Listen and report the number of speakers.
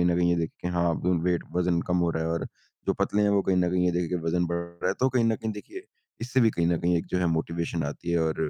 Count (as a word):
one